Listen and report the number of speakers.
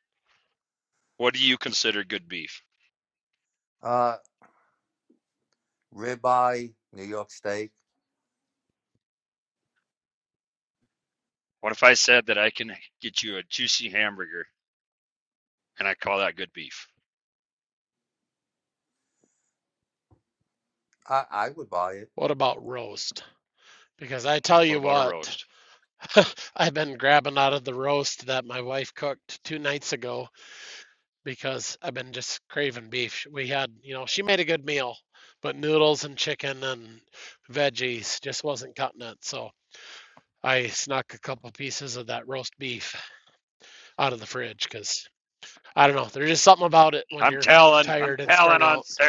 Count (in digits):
3